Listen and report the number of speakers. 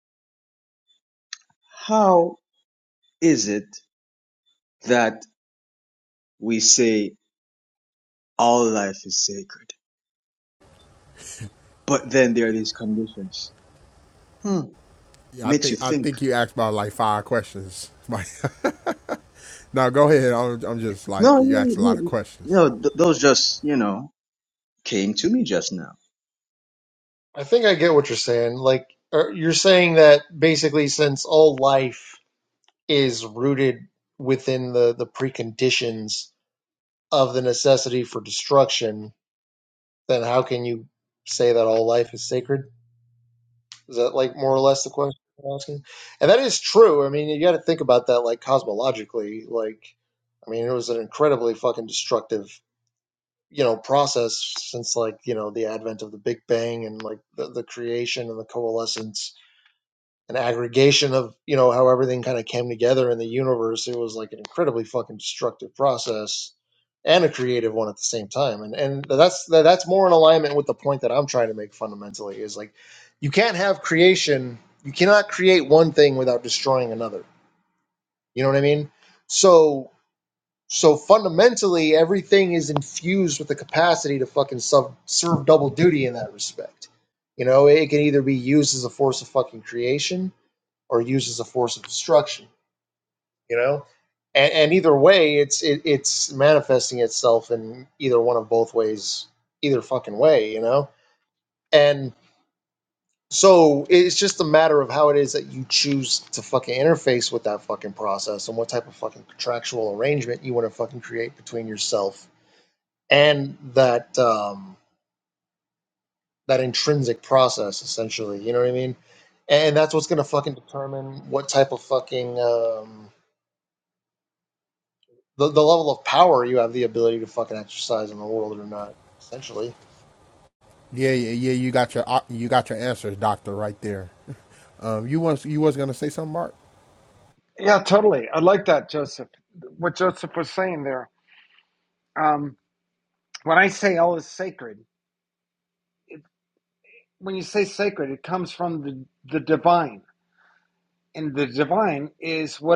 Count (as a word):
four